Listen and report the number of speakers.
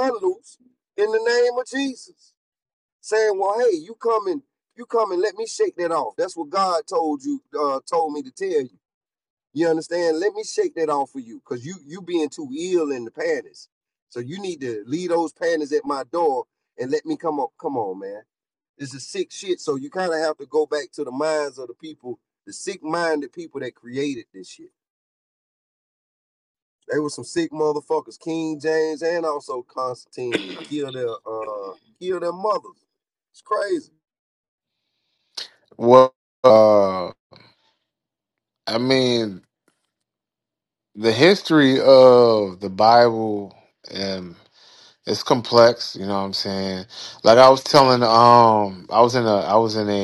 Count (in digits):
2